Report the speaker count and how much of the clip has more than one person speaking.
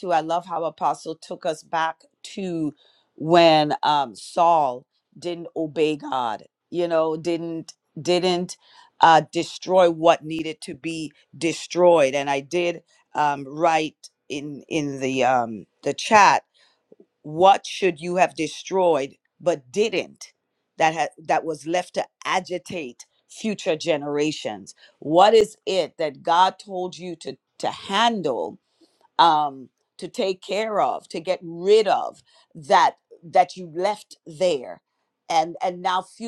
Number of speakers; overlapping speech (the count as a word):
one, no overlap